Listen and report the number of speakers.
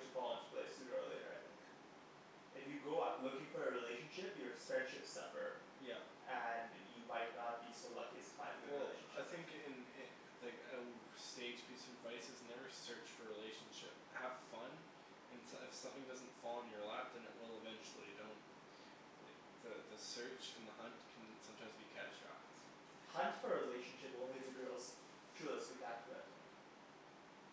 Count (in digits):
2